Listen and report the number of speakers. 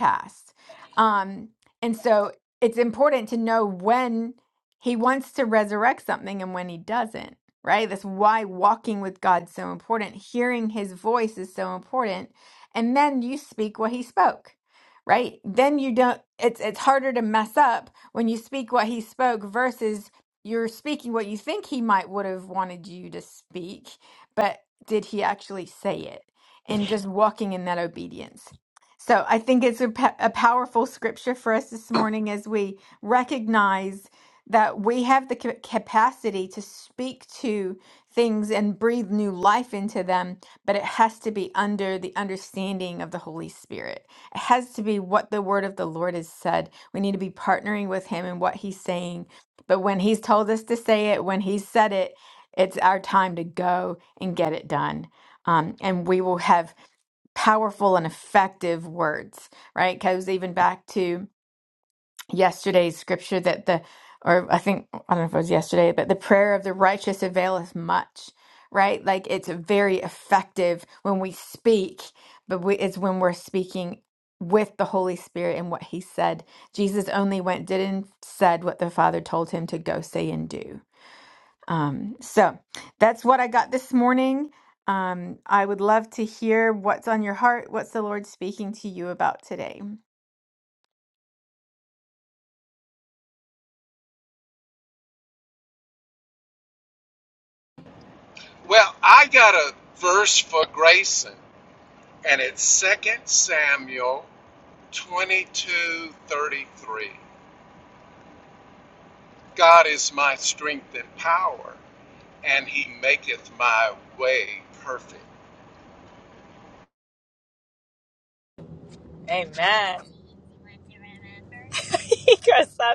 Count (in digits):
3